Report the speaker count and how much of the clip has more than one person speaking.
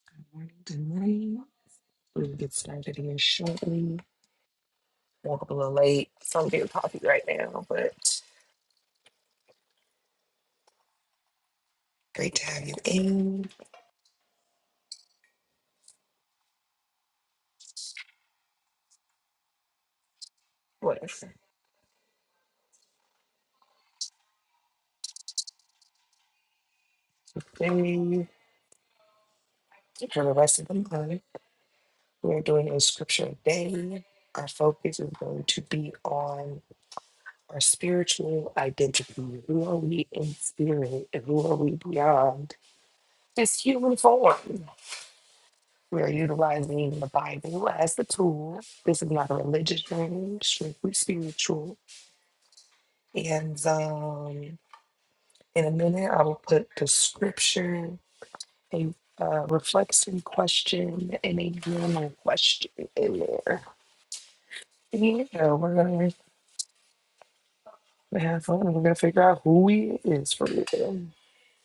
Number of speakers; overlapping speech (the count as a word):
one, no overlap